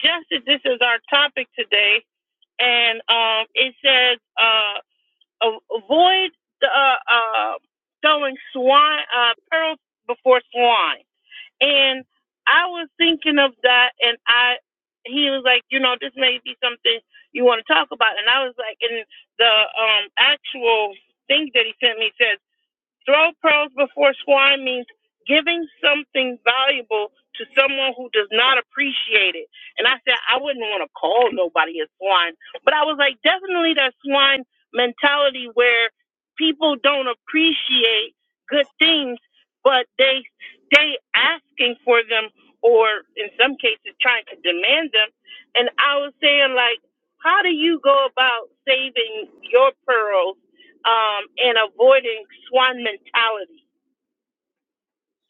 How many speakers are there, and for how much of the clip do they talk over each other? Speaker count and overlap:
1, no overlap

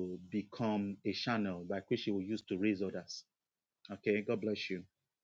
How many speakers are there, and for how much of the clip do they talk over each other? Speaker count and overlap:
1, no overlap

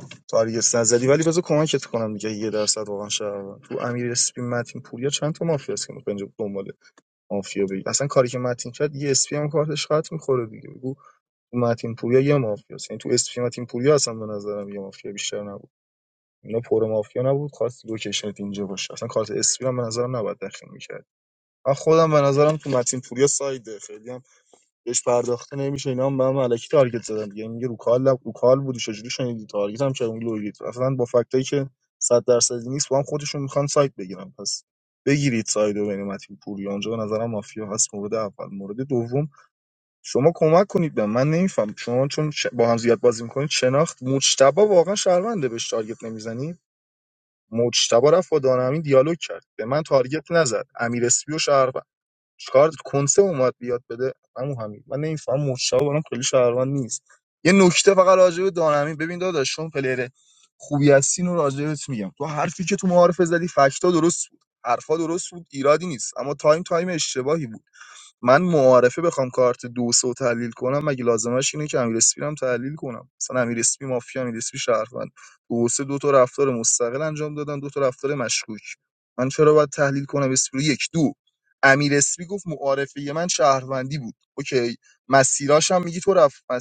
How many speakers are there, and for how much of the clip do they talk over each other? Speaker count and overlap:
1, no overlap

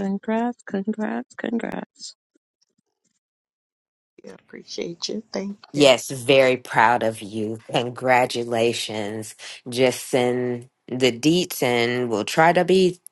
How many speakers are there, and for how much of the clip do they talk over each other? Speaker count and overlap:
3, about 2%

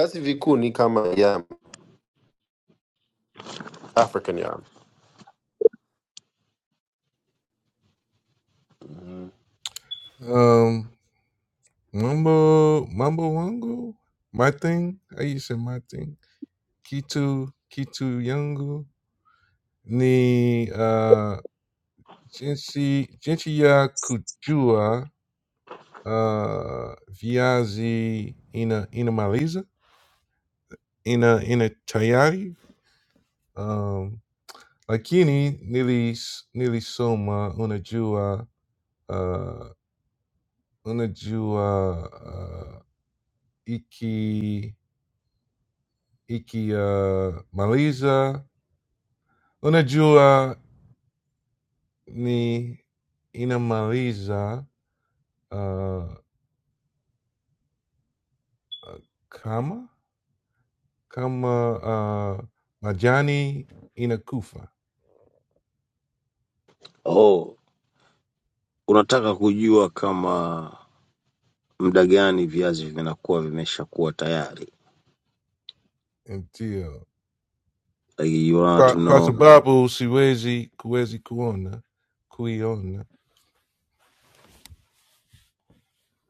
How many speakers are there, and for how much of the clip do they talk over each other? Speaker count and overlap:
3, about 1%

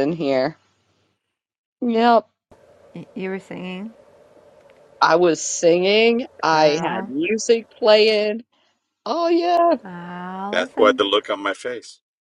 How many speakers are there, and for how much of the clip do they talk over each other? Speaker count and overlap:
3, about 10%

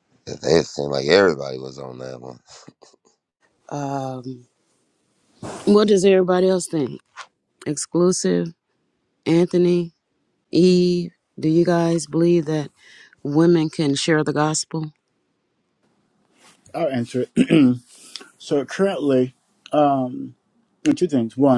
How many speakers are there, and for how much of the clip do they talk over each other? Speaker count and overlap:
3, no overlap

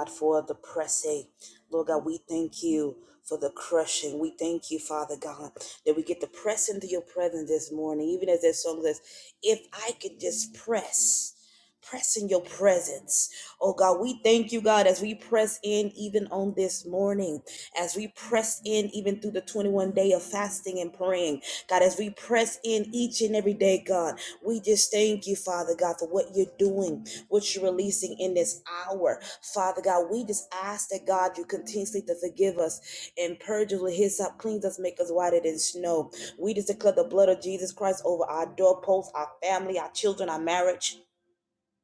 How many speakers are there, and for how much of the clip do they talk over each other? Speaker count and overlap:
1, no overlap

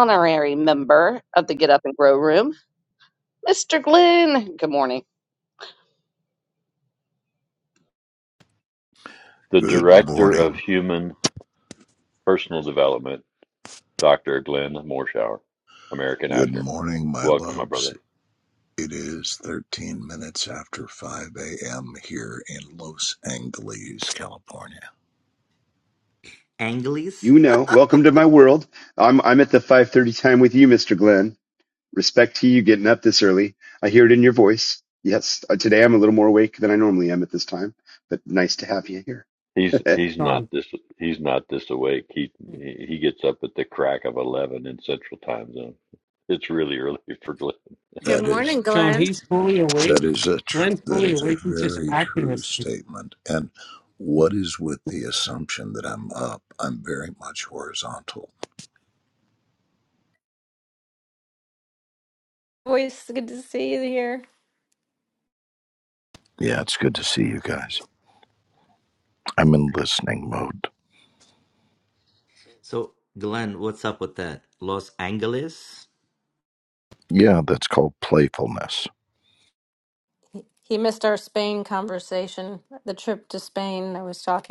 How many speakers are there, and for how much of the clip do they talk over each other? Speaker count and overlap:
7, about 7%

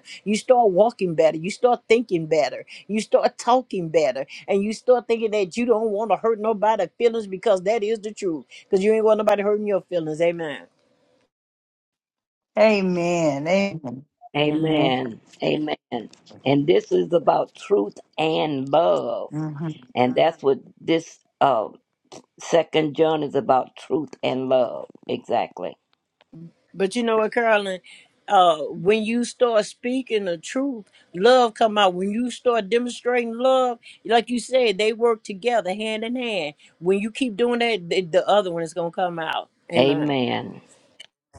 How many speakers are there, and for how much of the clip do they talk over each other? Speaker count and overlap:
3, about 2%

